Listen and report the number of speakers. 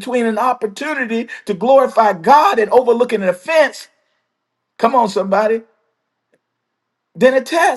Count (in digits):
1